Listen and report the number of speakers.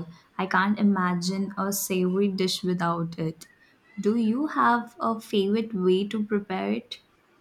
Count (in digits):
1